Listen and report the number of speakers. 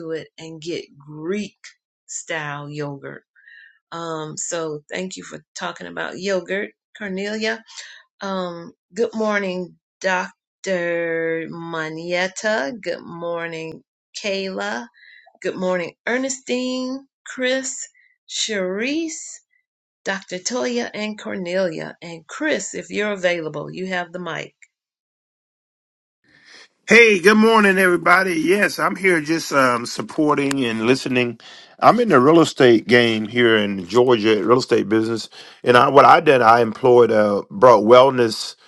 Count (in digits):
2